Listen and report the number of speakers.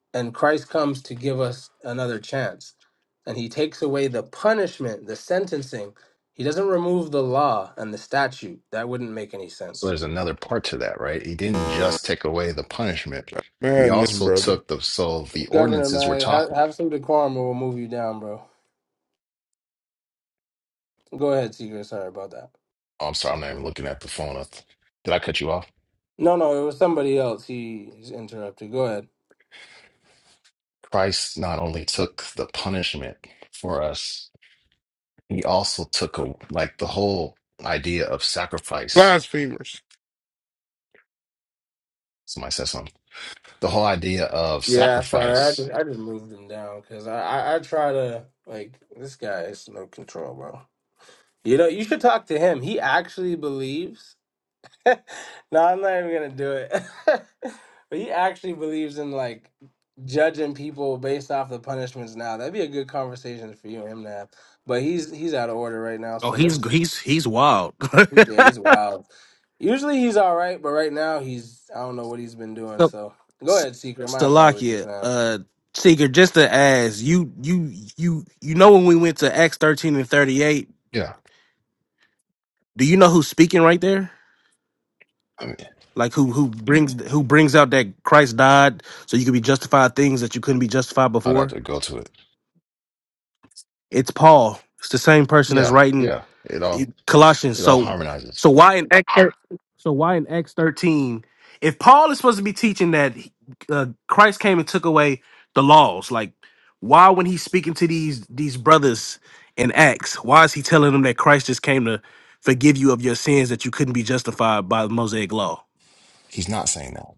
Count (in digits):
4